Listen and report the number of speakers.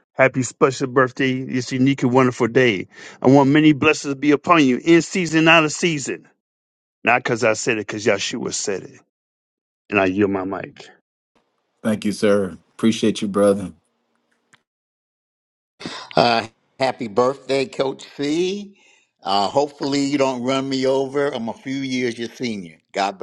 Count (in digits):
3